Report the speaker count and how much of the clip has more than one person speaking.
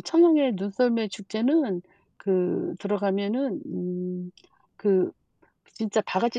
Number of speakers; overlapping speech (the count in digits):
1, no overlap